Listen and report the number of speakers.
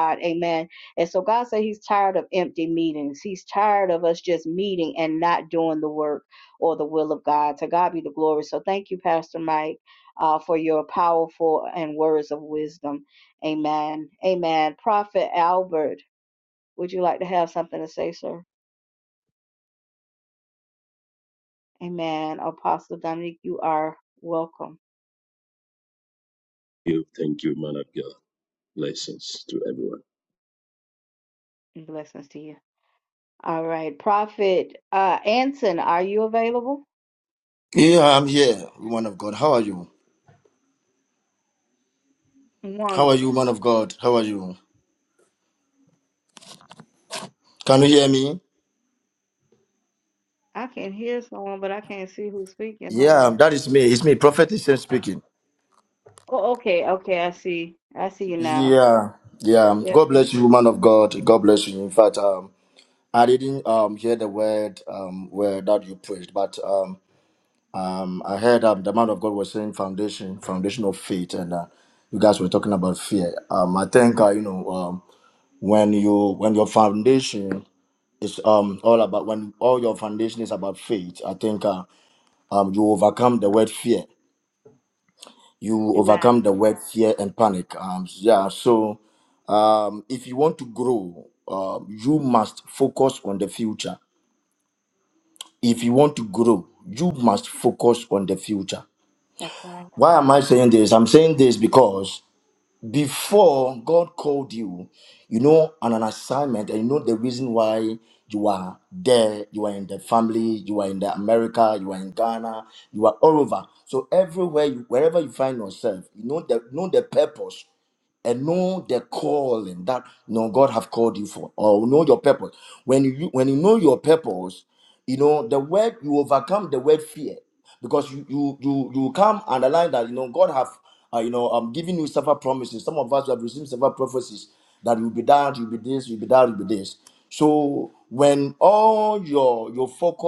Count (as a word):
three